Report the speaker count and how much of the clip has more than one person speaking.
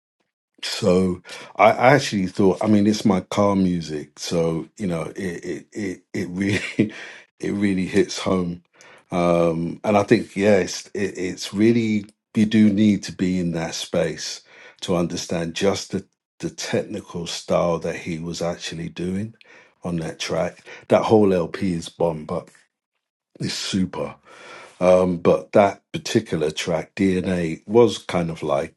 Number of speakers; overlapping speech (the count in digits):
1, no overlap